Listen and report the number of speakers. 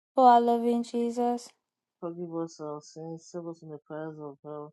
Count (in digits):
2